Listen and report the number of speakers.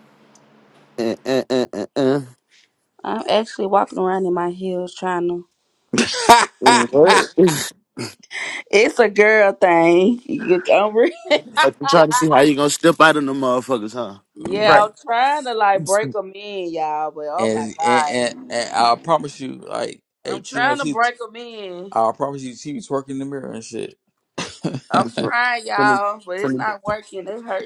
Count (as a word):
three